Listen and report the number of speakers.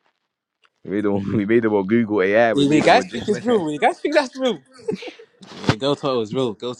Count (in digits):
3